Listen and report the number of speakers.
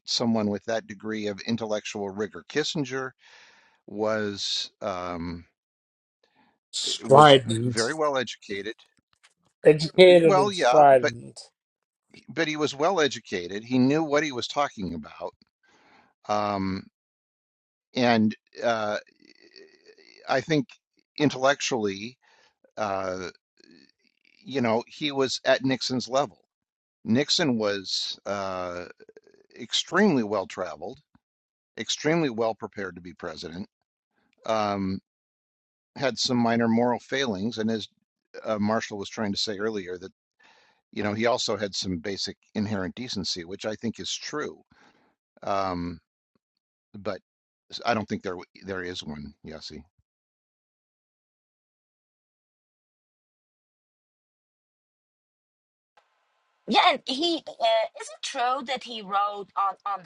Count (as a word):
three